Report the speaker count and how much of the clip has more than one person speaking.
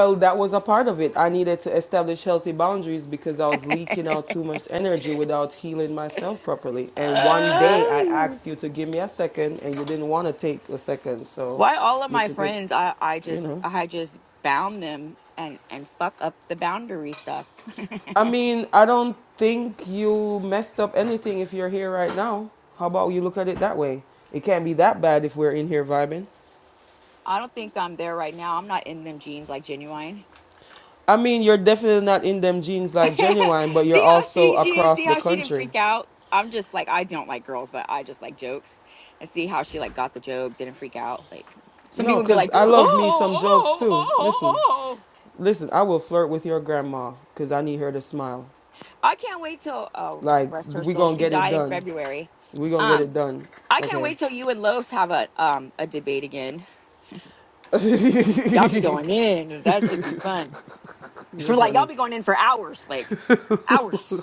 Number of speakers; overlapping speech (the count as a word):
two, about 14%